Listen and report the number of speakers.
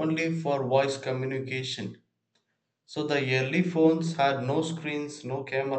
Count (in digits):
1